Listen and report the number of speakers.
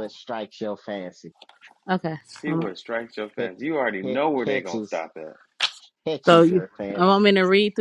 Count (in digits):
3